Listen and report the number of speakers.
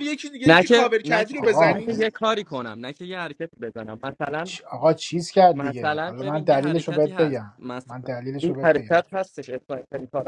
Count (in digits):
3